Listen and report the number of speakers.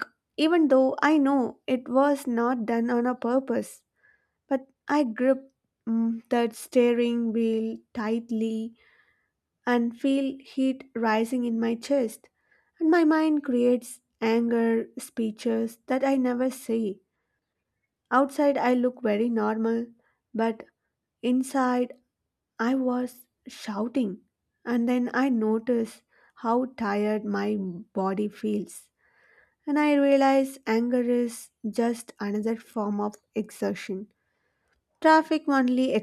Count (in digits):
1